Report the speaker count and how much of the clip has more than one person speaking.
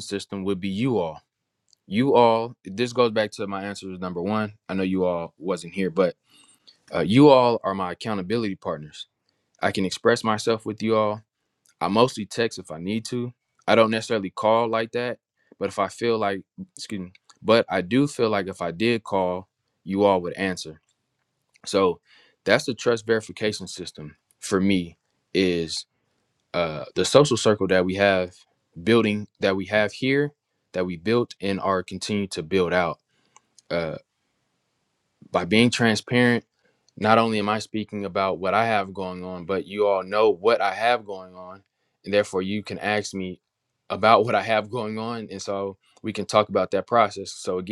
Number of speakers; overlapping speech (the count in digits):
1, no overlap